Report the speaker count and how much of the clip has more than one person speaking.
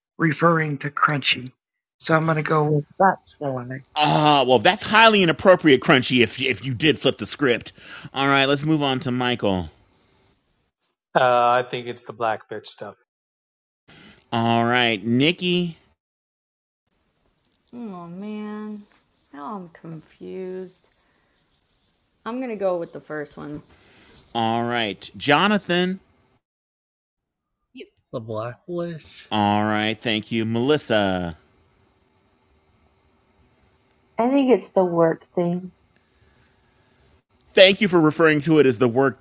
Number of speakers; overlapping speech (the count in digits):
6, no overlap